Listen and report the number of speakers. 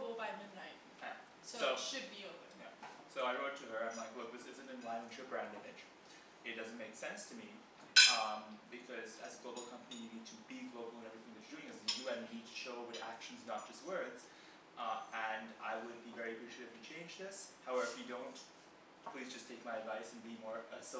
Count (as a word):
two